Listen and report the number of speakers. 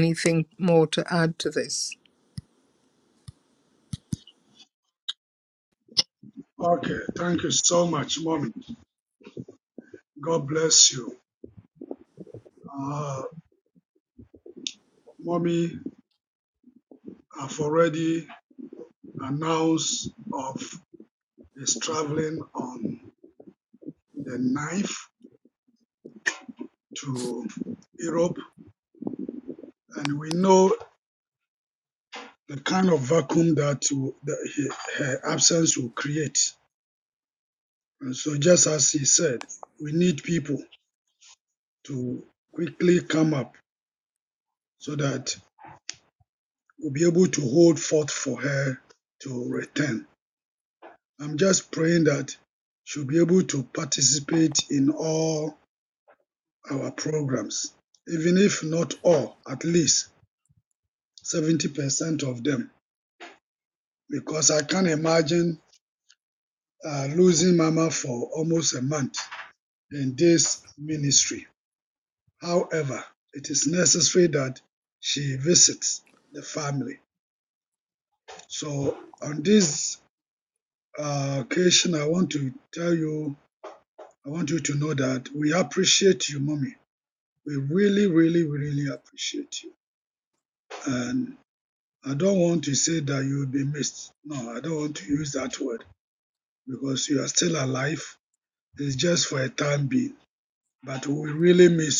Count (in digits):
2